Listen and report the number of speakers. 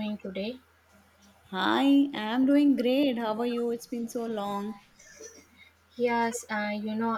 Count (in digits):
2